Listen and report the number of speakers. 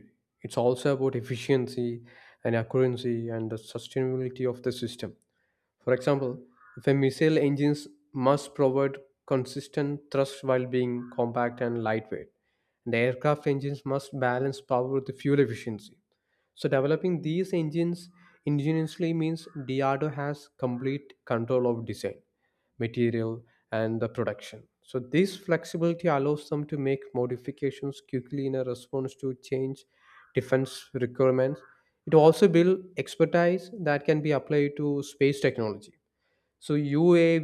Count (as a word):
one